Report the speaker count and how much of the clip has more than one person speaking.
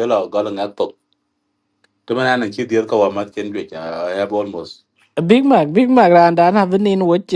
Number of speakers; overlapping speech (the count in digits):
2, no overlap